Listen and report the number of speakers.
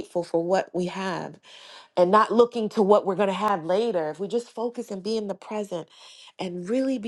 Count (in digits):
1